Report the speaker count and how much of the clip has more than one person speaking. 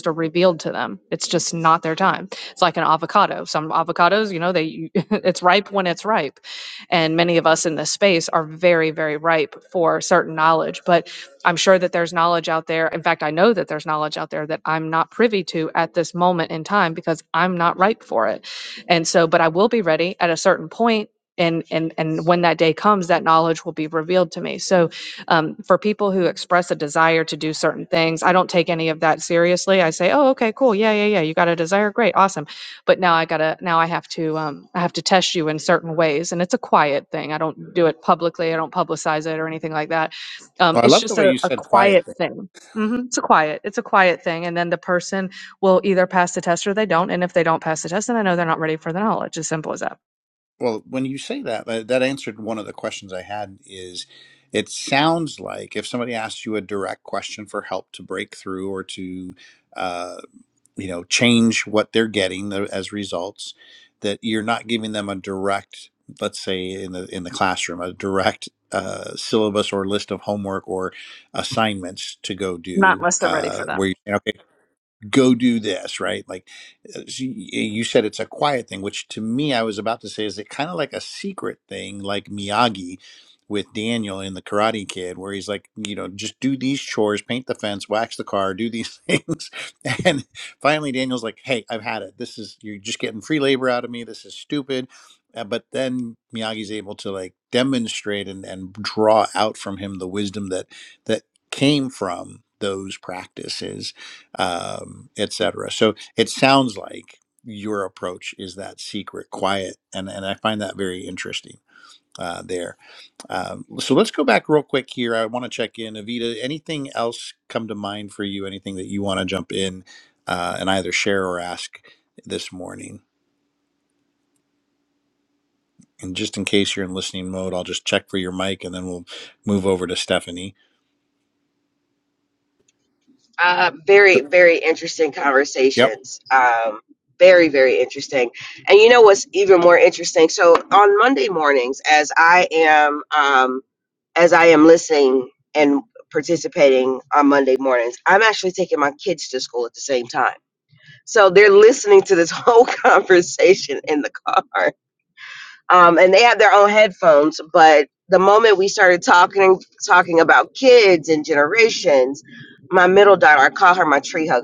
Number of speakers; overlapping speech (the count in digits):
3, about 2%